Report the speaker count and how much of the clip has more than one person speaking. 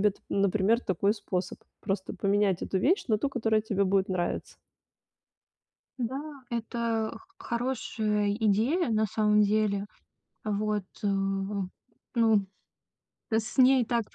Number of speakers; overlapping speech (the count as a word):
two, no overlap